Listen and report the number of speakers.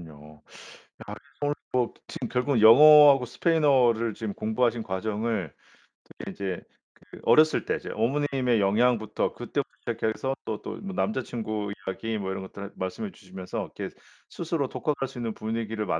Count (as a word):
one